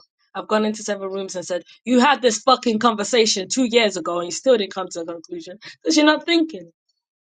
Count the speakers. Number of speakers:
1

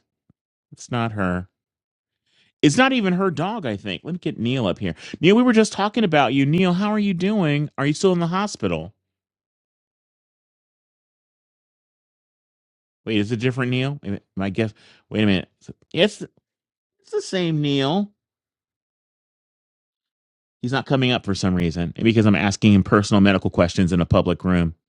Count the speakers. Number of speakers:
1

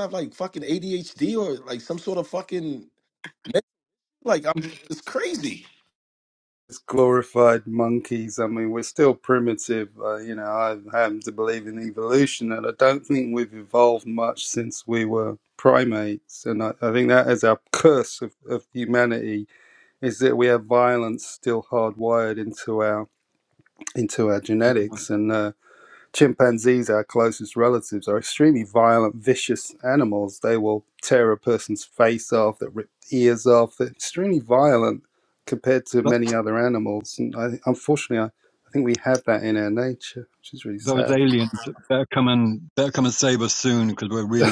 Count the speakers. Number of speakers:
3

